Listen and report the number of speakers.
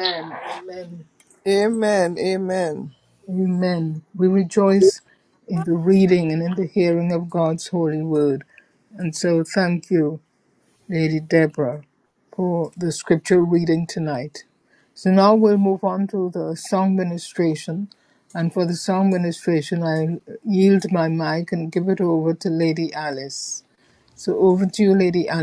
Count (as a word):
two